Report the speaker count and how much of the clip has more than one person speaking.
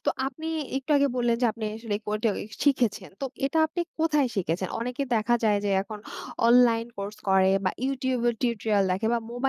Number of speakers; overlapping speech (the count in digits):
1, no overlap